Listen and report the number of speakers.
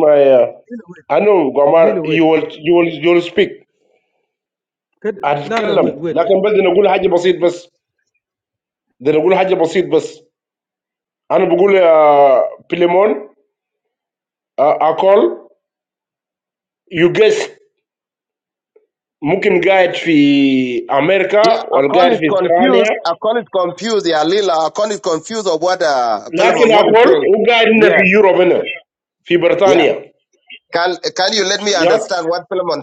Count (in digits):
3